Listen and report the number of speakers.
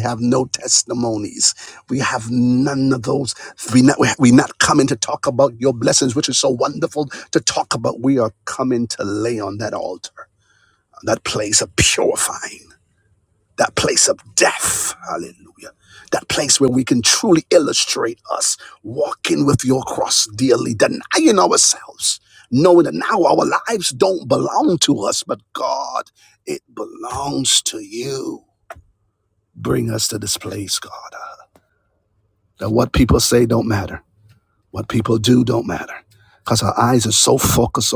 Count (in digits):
1